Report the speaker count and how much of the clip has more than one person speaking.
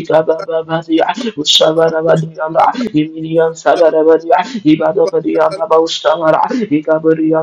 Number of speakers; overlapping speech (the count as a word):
one, no overlap